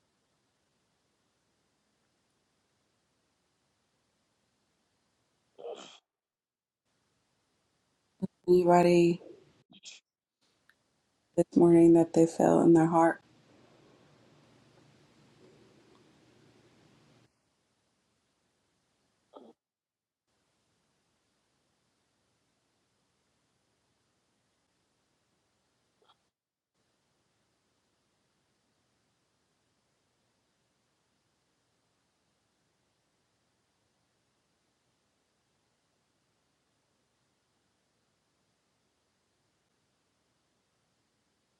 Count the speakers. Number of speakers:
1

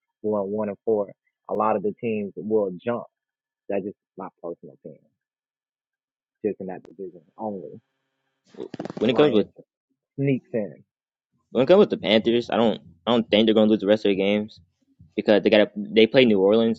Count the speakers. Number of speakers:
2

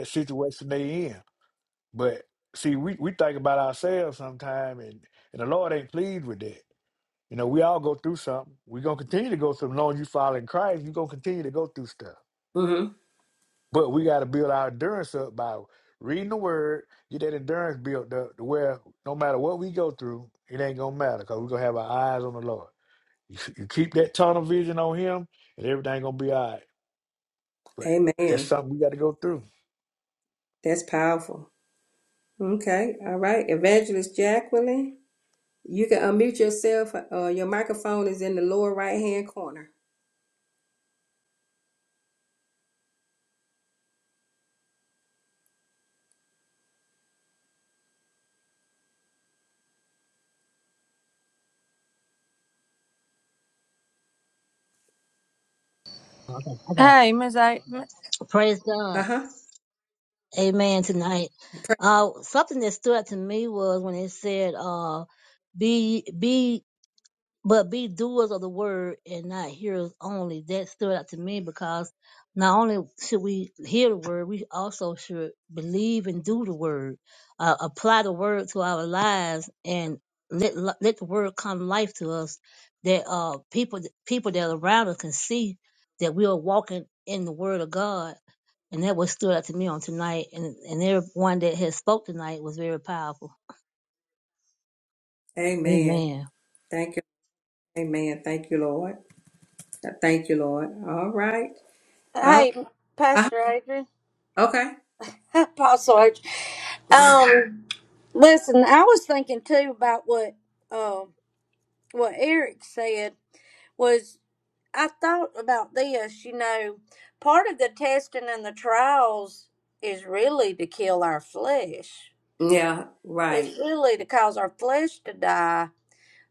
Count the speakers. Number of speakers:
4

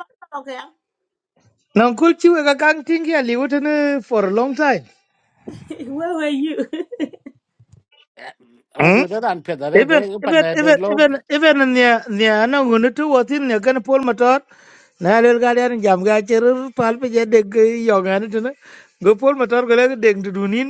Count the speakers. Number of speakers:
3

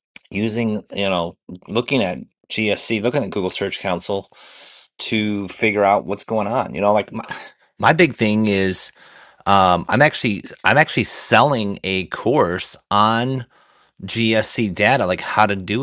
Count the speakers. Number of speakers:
1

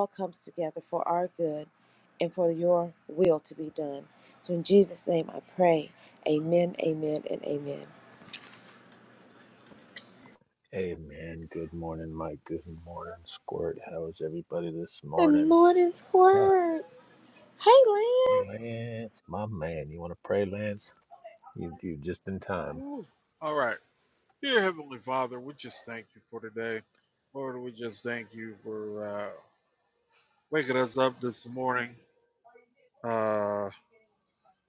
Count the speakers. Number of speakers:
3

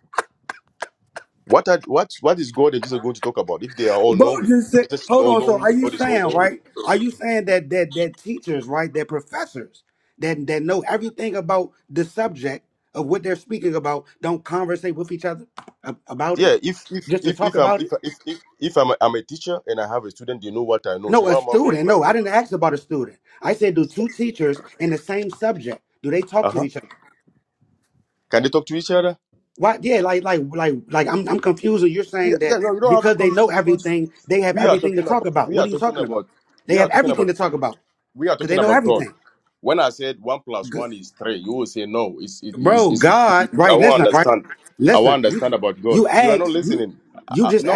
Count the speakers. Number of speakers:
2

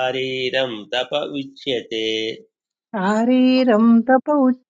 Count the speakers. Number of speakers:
2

